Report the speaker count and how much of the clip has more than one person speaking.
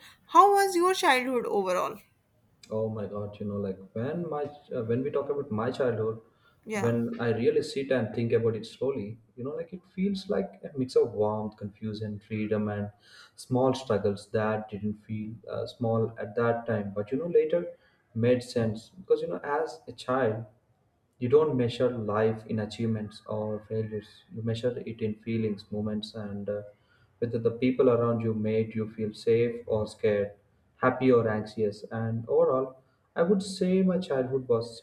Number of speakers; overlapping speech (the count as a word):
two, about 1%